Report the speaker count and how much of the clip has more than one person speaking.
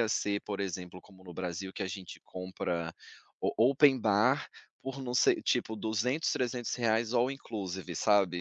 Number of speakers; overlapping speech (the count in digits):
1, no overlap